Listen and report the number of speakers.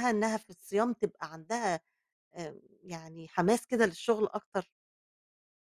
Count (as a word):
one